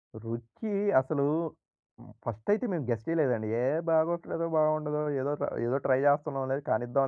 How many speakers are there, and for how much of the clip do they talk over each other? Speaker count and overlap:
1, no overlap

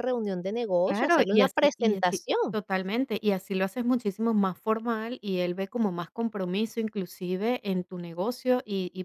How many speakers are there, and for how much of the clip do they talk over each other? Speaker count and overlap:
2, about 15%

